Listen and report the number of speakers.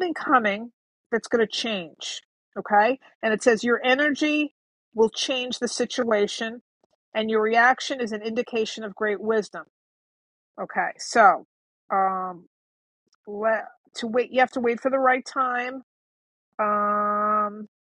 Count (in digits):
1